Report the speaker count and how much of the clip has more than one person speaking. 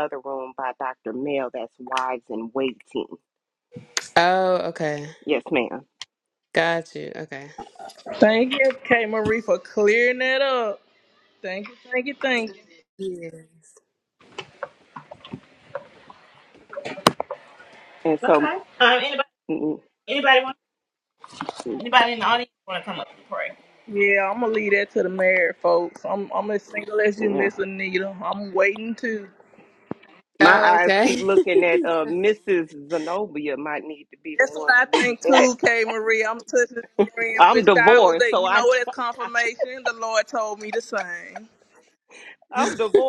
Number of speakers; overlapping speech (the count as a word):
four, about 9%